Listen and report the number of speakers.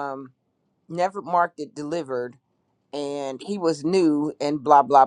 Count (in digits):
1